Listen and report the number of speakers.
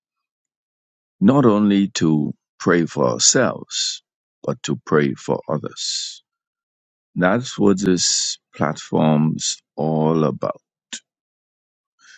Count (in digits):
1